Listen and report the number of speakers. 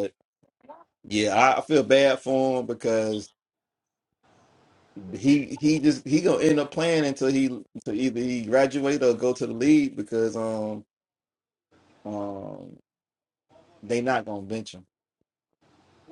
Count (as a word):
one